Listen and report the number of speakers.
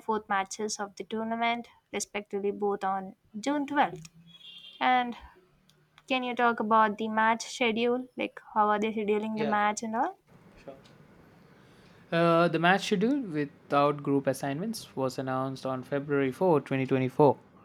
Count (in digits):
2